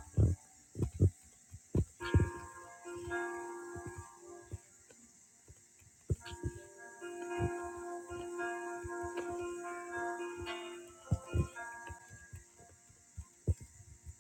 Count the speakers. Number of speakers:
zero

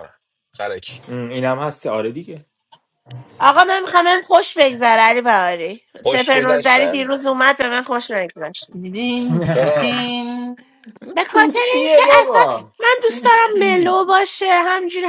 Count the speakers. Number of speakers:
four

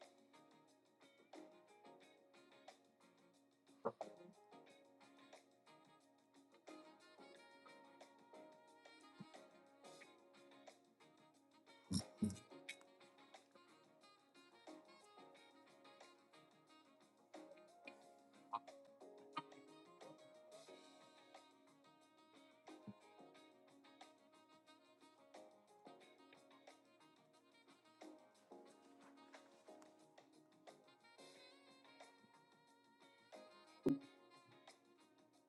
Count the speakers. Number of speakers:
zero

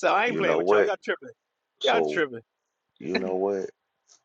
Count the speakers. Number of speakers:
two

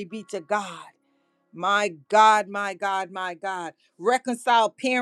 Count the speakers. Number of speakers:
one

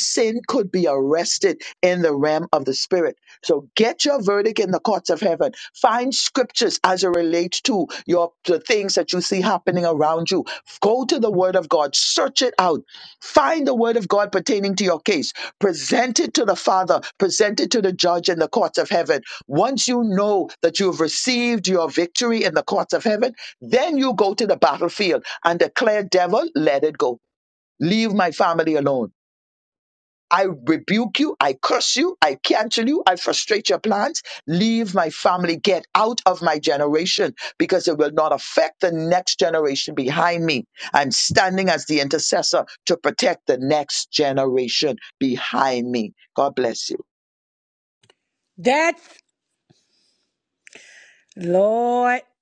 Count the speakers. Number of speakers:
two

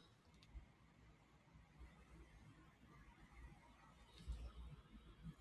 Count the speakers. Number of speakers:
zero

